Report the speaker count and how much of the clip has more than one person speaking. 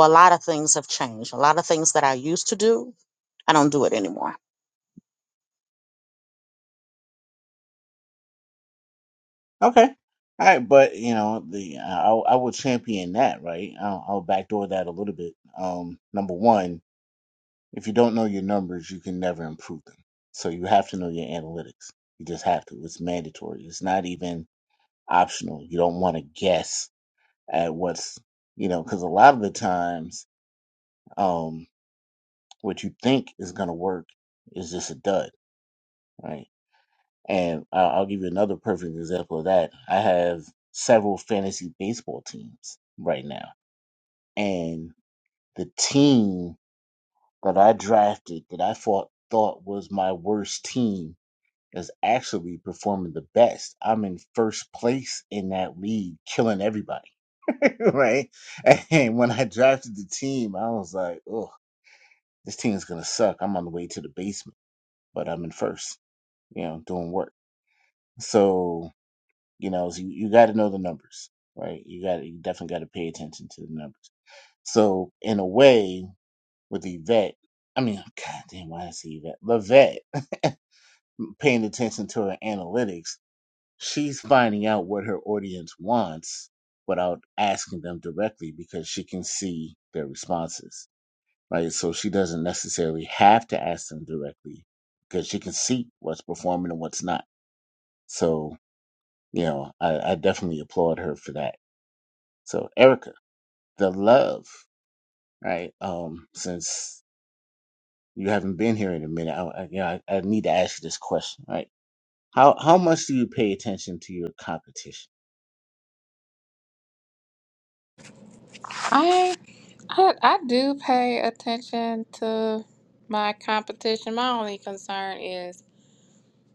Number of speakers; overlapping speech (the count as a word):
three, no overlap